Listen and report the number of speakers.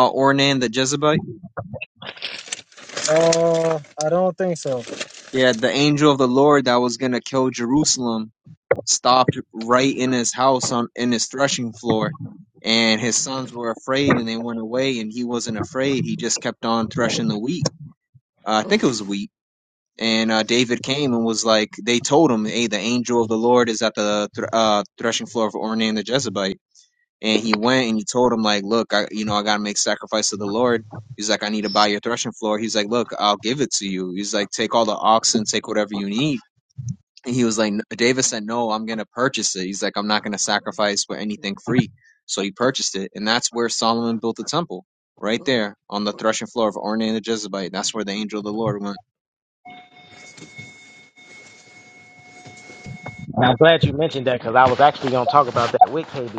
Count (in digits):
3